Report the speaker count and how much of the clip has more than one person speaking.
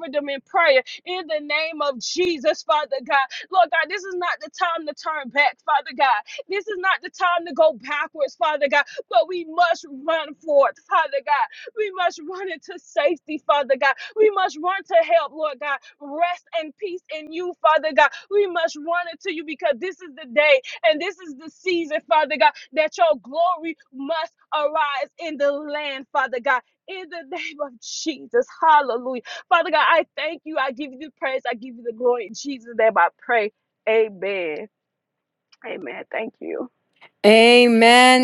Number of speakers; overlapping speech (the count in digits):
2, no overlap